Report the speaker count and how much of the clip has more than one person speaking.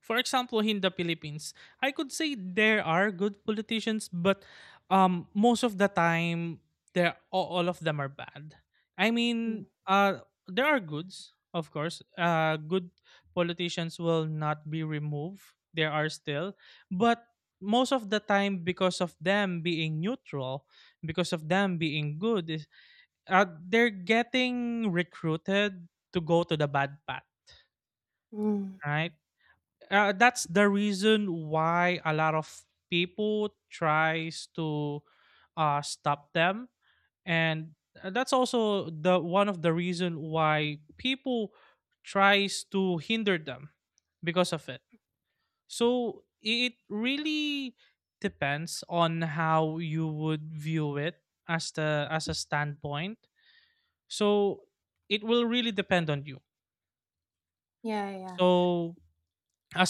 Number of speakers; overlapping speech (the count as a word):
two, under 1%